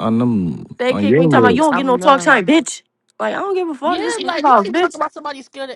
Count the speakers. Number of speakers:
three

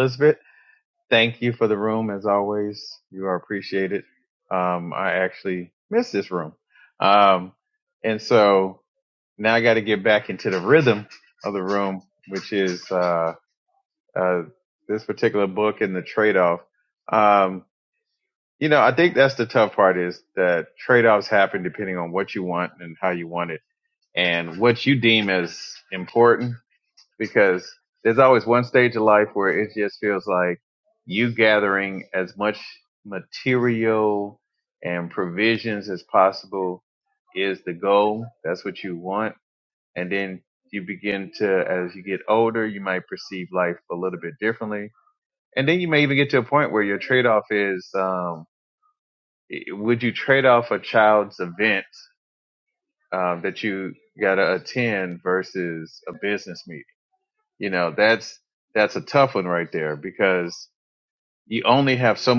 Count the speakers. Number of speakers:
one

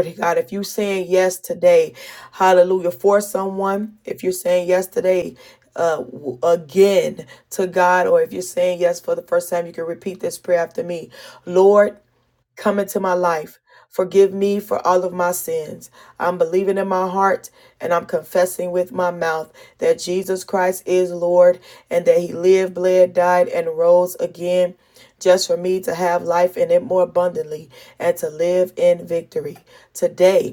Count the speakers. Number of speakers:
one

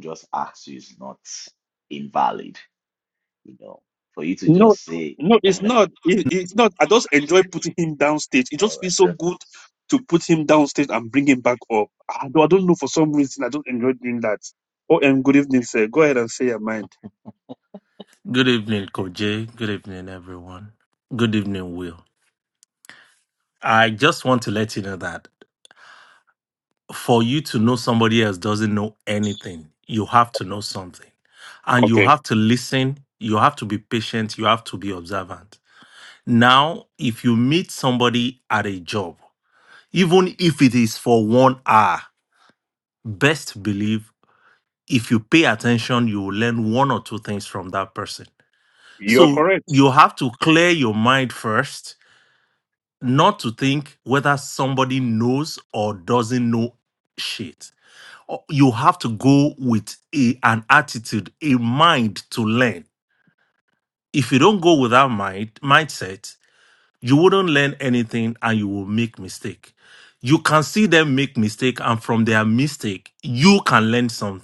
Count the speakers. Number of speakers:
three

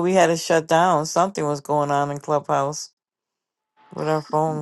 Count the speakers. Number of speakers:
one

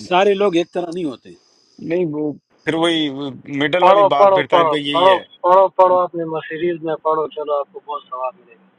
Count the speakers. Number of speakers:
three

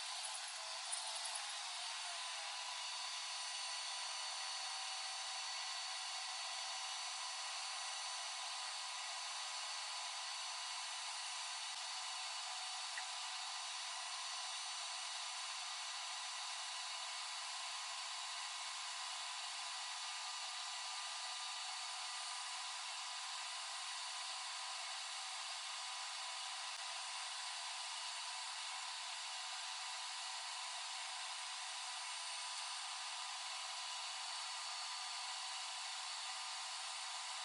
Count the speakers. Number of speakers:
zero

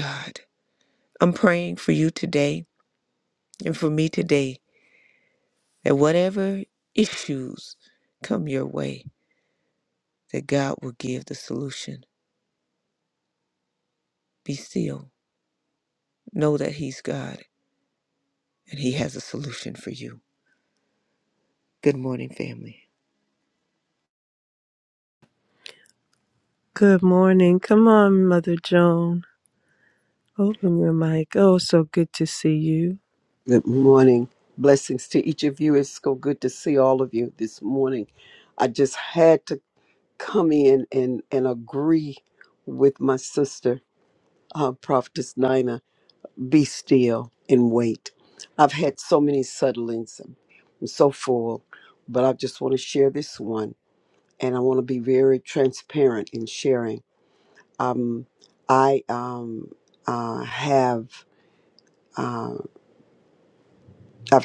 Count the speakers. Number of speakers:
three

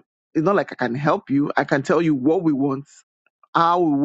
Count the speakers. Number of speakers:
one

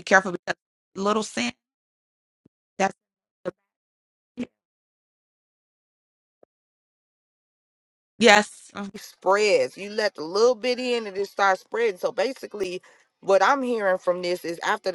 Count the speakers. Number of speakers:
two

